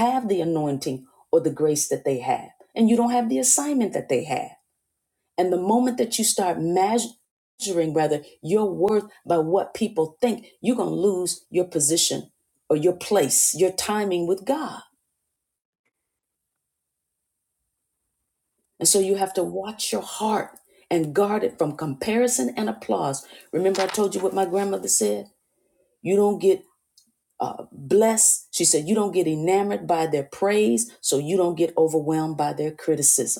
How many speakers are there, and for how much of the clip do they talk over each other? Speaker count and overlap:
1, no overlap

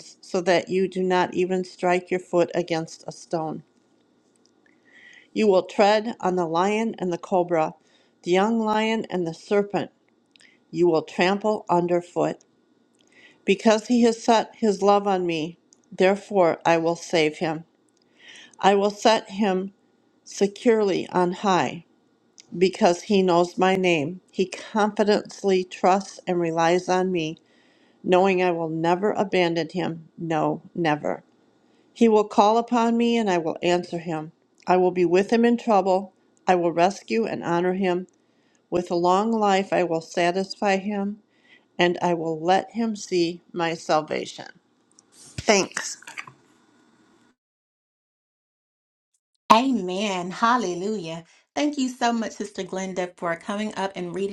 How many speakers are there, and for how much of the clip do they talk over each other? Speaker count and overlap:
2, no overlap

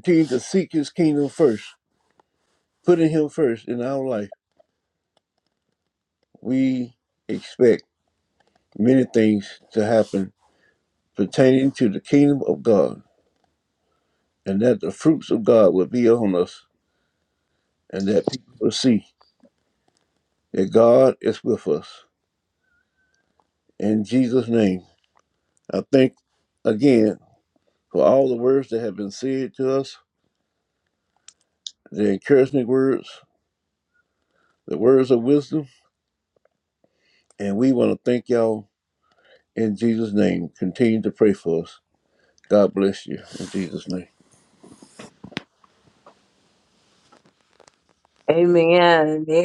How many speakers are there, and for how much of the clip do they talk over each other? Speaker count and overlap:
2, no overlap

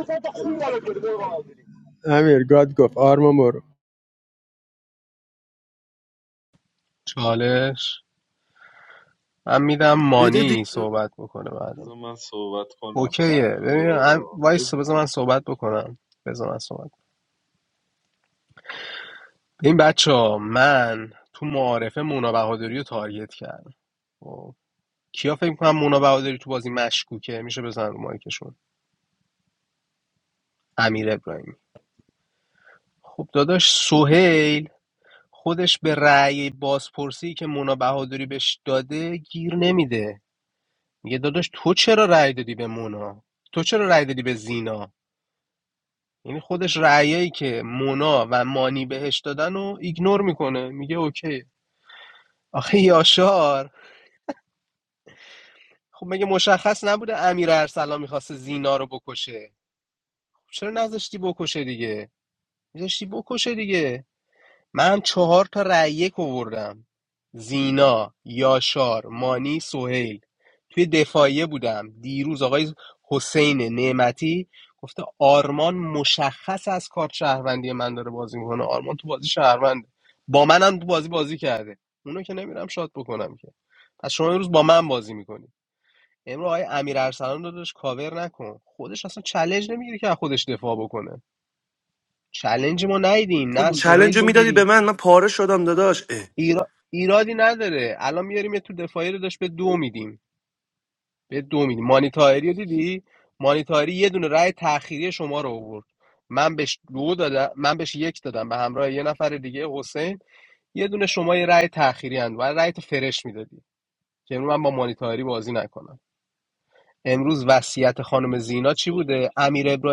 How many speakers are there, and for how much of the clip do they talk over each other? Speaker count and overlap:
5, about 3%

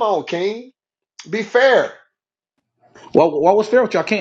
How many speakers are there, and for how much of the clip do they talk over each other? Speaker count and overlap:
2, no overlap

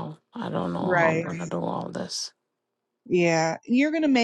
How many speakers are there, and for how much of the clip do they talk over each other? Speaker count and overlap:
2, about 11%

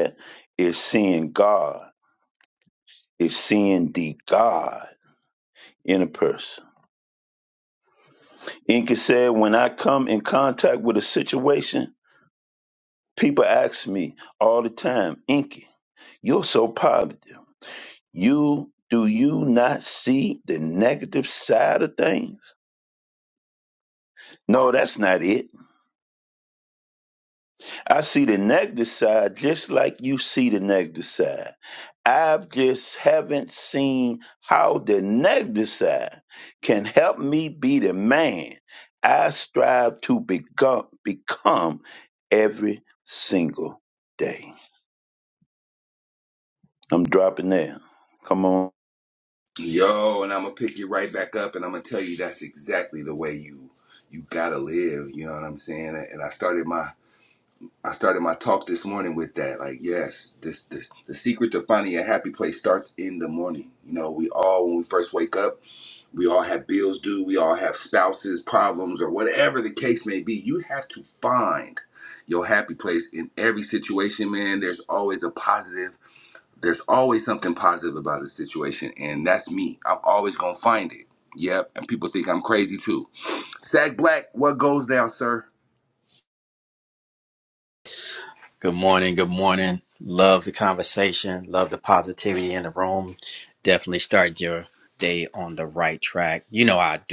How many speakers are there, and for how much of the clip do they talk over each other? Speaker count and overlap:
3, no overlap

